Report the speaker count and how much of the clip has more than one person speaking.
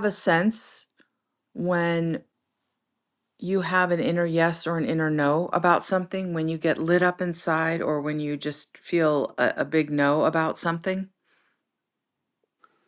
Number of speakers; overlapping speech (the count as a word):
one, no overlap